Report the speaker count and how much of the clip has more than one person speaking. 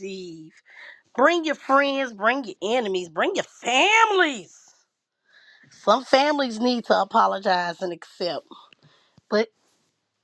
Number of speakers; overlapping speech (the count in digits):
1, no overlap